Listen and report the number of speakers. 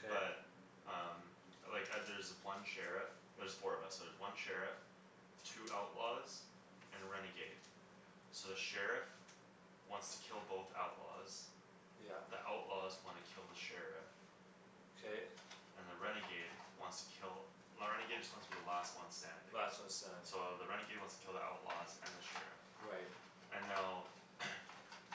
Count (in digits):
2